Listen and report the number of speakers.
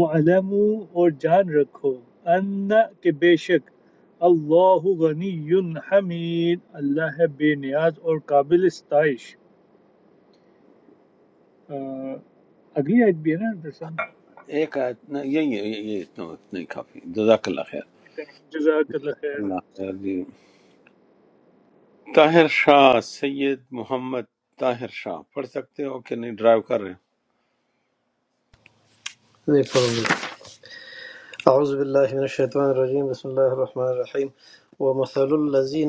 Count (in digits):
3